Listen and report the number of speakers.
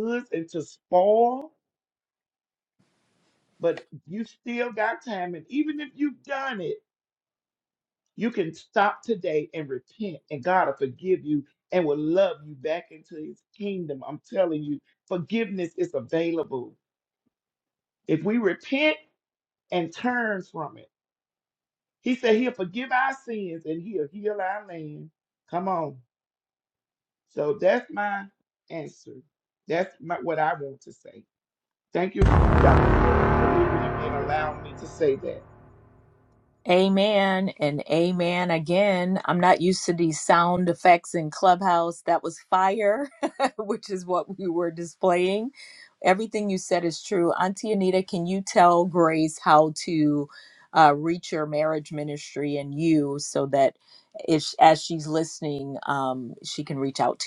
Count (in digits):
2